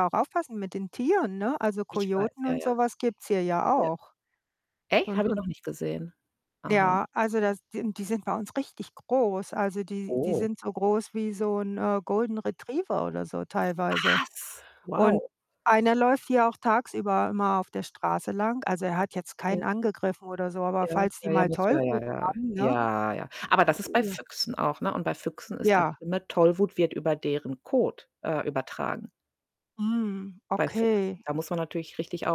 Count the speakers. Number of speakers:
2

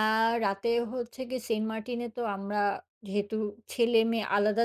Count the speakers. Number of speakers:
1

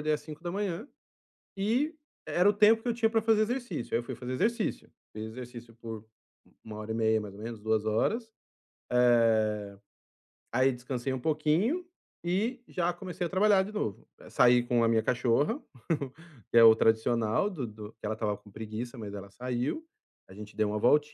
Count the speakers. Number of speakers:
1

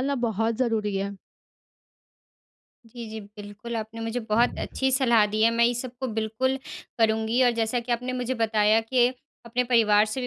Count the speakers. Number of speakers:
2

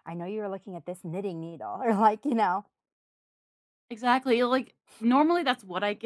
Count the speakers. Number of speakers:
2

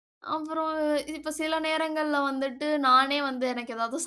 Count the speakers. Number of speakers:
1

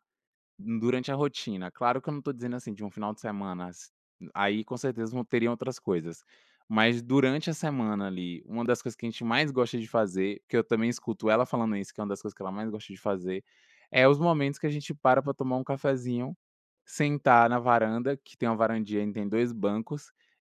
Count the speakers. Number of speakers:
1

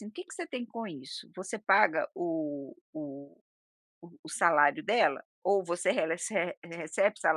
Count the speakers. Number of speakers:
1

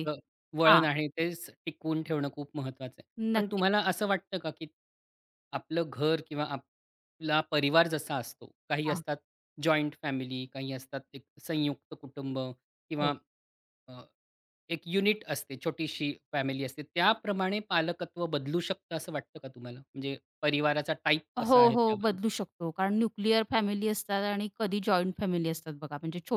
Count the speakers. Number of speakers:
2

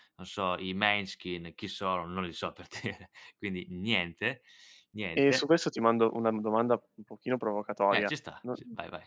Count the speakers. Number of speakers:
2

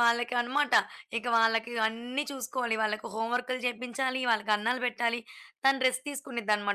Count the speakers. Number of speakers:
1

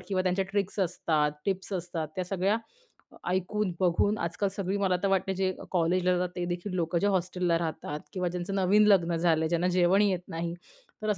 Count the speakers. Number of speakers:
1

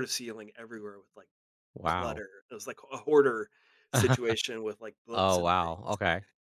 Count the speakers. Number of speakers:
2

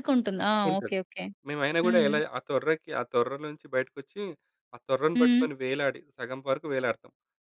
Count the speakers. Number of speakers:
2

